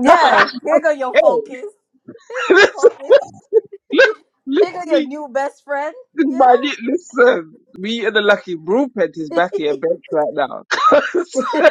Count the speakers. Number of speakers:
two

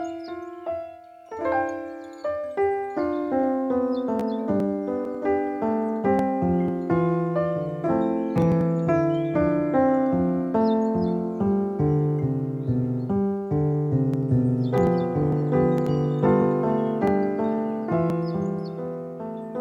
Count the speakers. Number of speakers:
zero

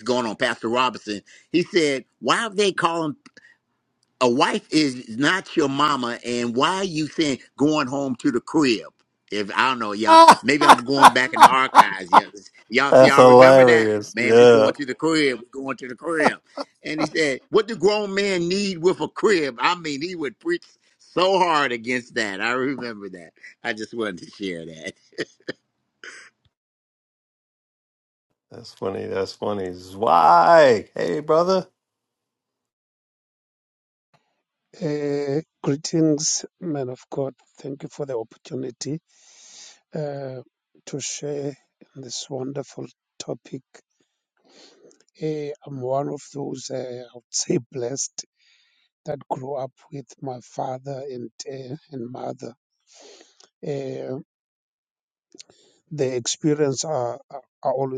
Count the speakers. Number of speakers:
three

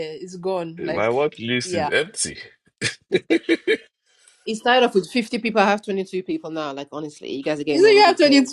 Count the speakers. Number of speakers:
three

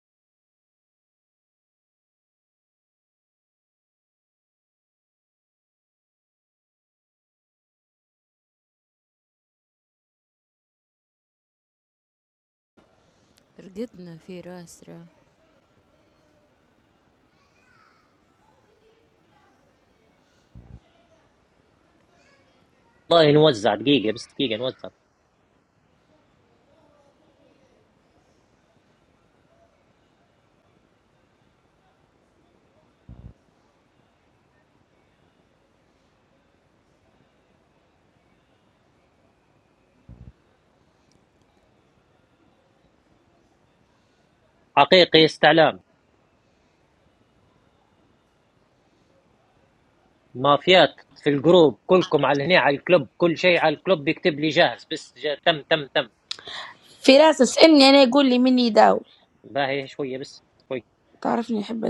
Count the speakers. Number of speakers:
three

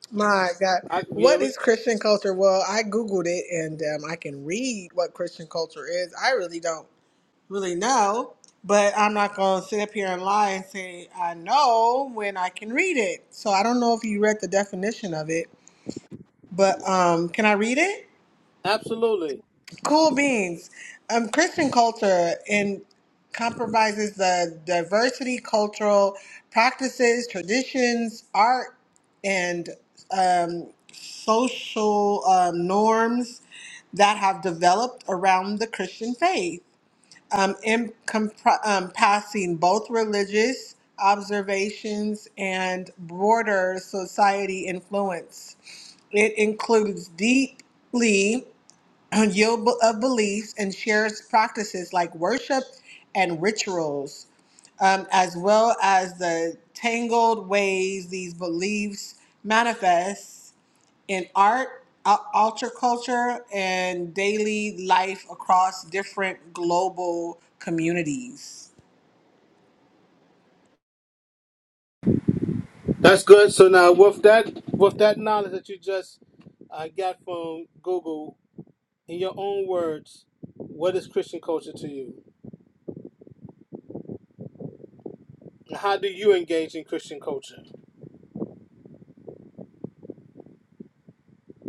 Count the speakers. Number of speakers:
two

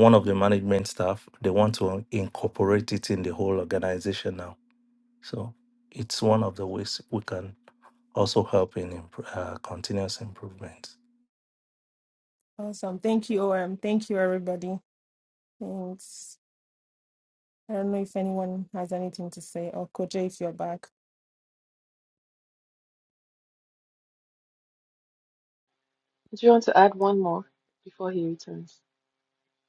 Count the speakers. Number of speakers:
three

